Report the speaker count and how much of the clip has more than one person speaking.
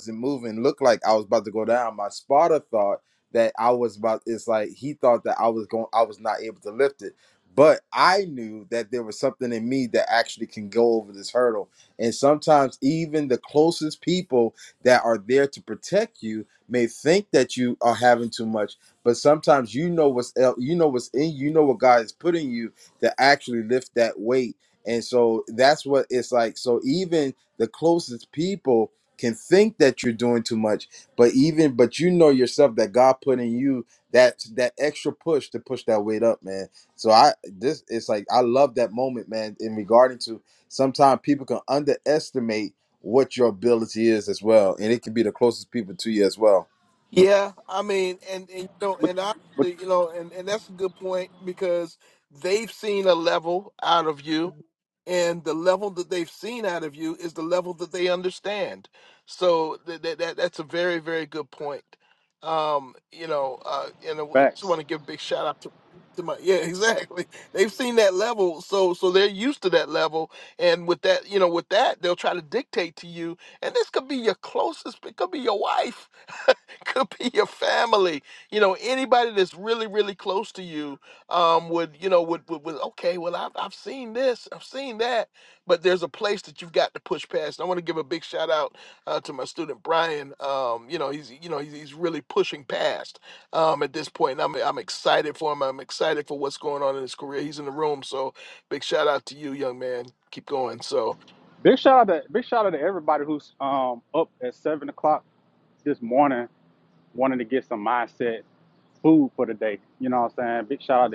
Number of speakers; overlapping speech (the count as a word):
three, under 1%